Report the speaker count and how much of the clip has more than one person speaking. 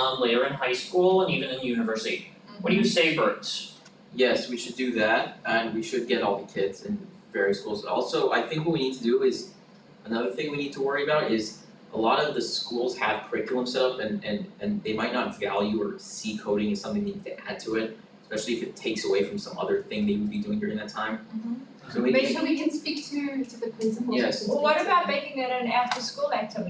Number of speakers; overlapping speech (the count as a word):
four, about 9%